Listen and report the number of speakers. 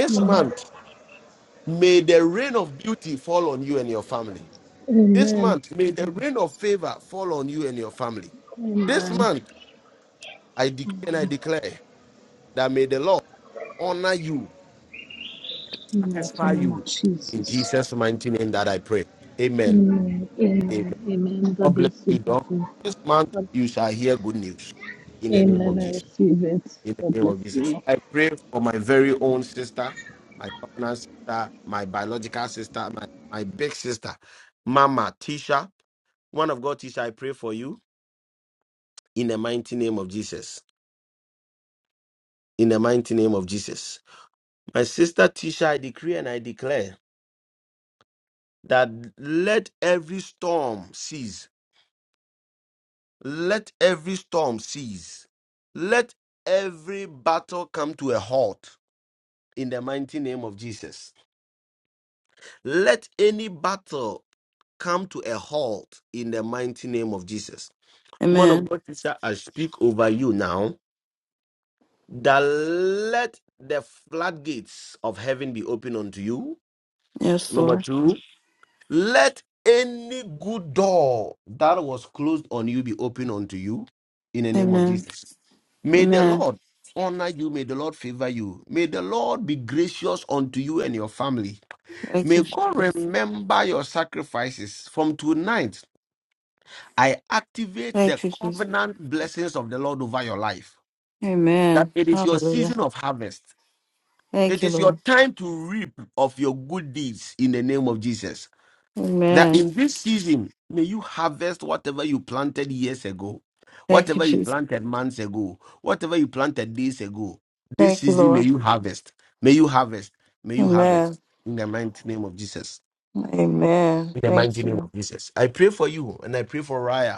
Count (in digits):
3